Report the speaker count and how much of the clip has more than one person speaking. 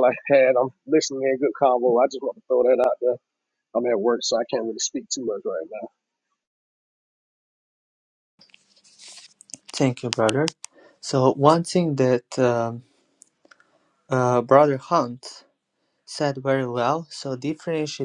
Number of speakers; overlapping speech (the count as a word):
two, no overlap